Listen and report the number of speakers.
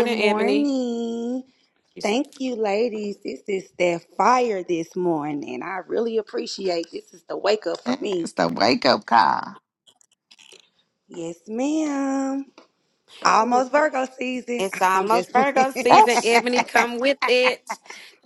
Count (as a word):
three